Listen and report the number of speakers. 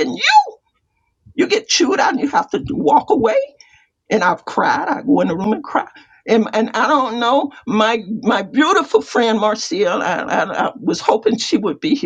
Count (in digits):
1